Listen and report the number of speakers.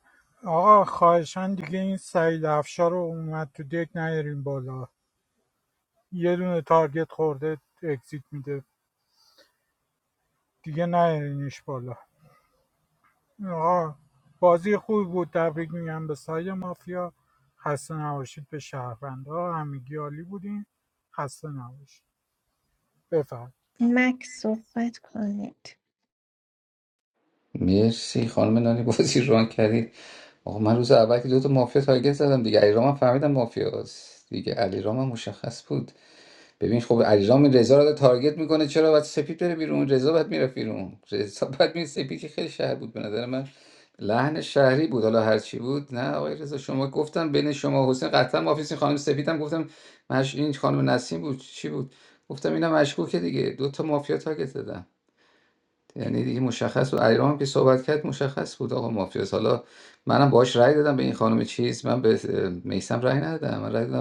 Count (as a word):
three